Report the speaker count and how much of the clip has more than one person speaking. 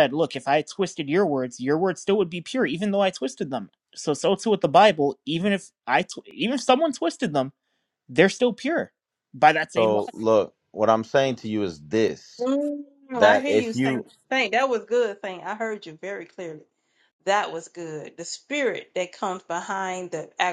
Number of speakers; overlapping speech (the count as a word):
three, about 6%